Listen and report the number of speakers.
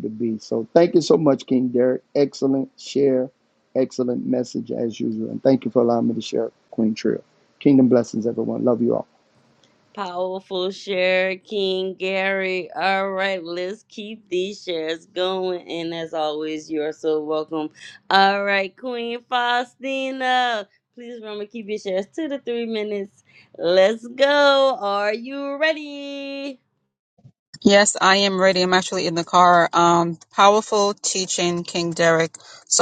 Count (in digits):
3